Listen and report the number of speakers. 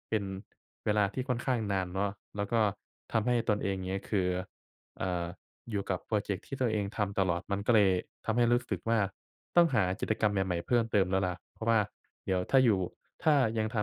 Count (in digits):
1